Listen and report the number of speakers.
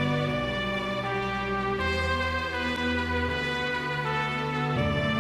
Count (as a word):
zero